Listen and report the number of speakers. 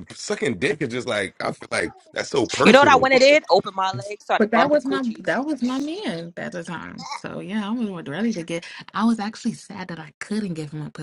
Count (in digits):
3